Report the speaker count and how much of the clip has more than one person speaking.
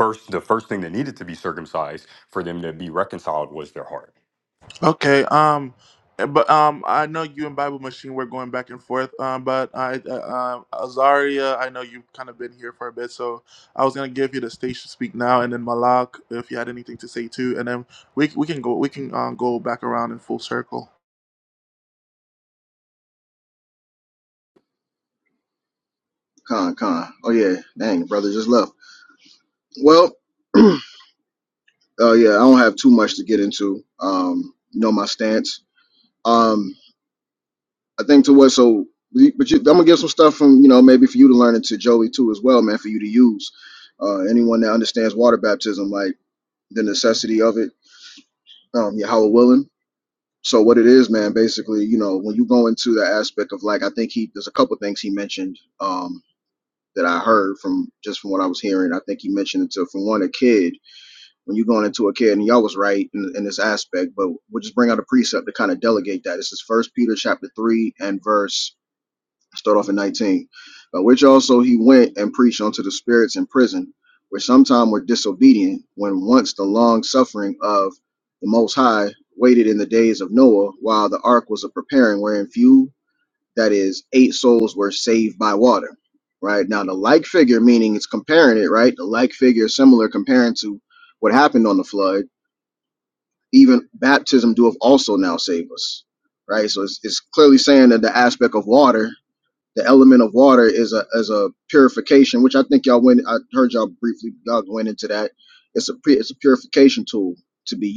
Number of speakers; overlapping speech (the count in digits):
3, no overlap